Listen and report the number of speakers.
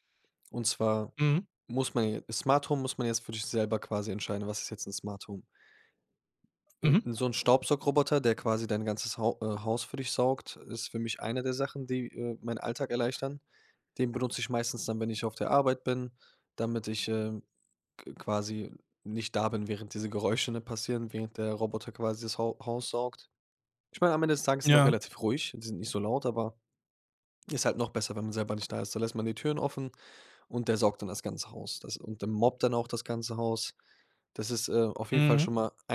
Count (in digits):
2